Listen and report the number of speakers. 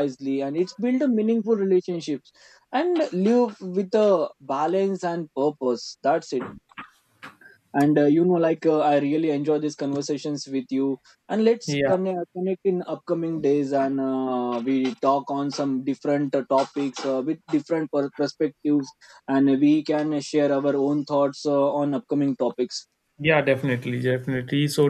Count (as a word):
two